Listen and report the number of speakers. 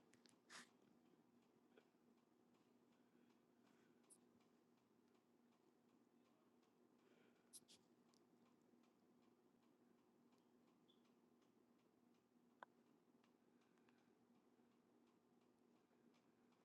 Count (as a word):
zero